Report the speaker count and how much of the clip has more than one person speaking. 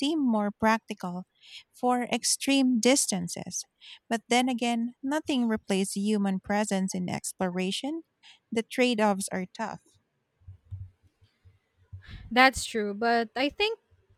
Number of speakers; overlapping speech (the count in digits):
2, no overlap